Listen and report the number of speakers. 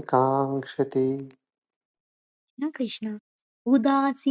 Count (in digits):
2